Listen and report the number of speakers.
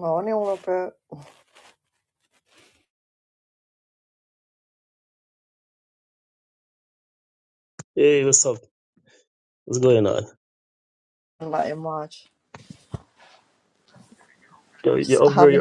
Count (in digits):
2